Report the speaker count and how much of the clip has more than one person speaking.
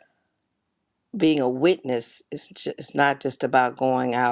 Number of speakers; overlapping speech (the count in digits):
1, no overlap